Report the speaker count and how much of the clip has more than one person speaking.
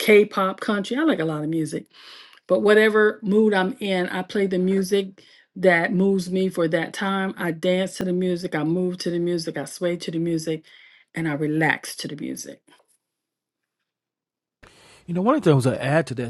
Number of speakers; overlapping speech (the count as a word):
two, no overlap